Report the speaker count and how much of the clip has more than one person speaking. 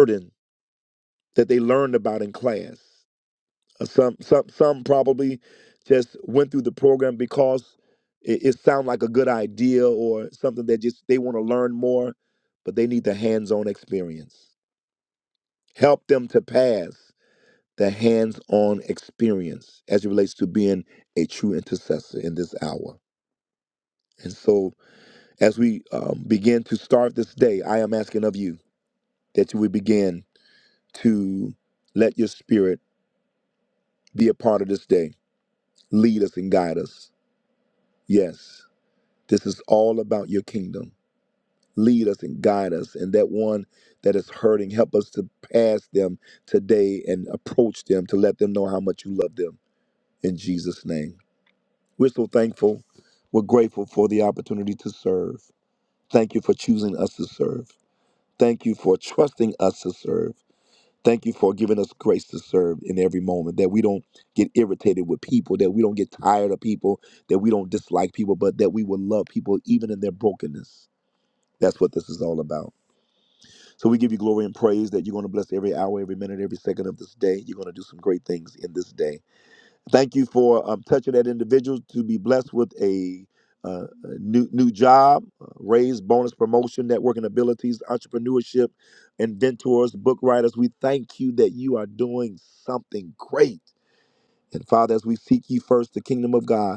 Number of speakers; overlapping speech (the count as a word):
one, no overlap